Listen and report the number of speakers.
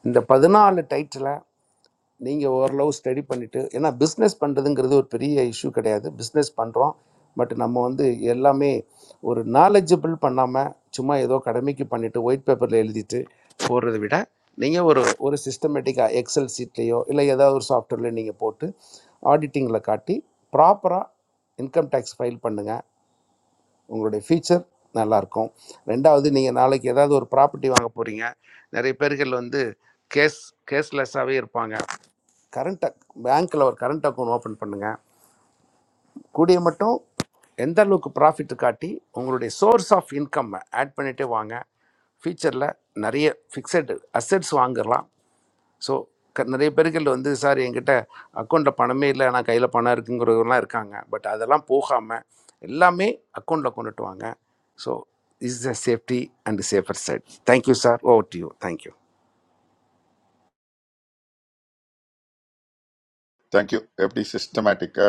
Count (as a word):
two